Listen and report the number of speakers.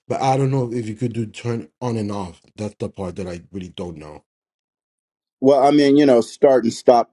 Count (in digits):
2